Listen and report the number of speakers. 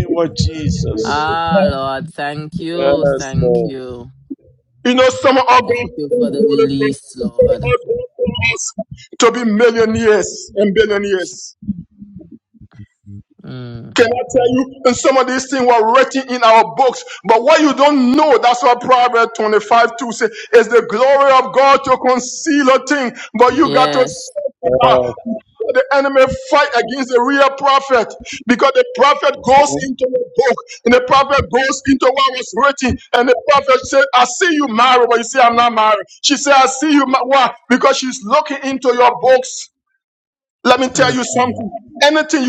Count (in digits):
3